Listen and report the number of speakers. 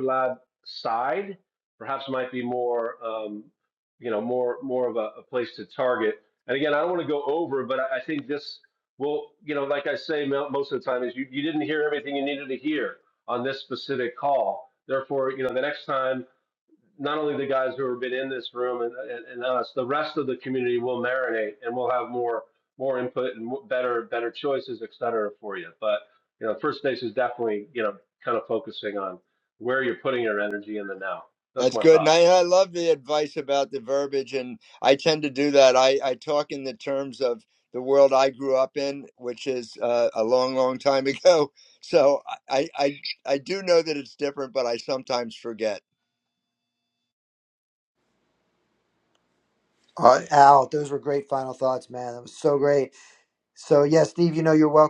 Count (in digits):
3